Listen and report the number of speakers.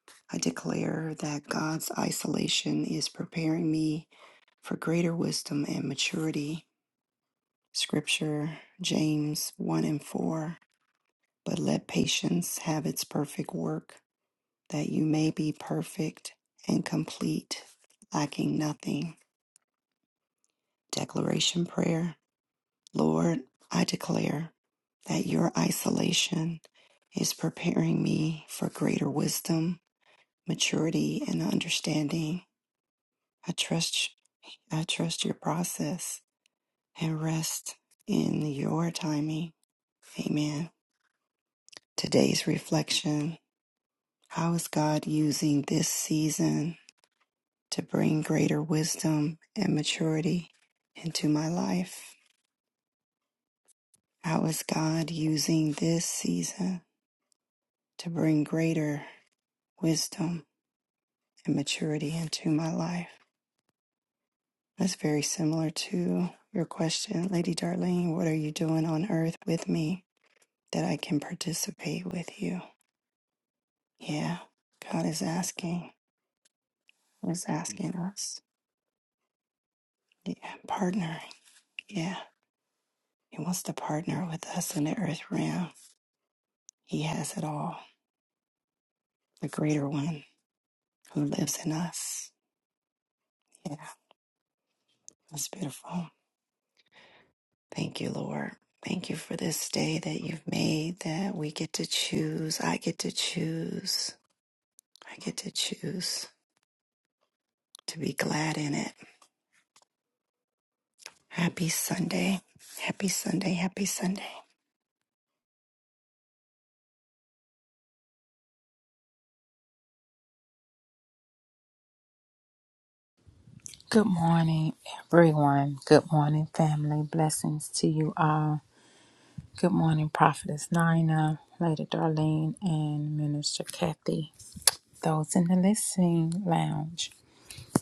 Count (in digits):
2